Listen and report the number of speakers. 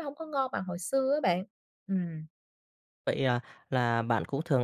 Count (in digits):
2